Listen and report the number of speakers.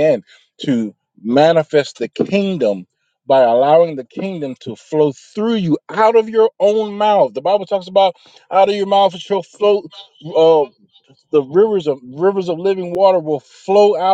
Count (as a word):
one